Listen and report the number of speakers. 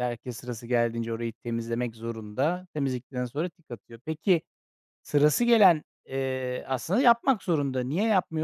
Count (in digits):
1